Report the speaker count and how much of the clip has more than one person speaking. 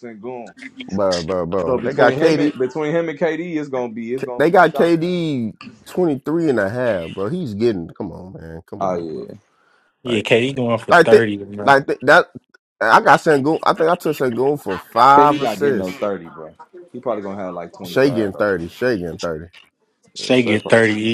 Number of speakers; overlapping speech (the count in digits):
3, about 21%